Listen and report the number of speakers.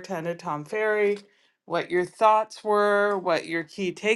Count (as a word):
one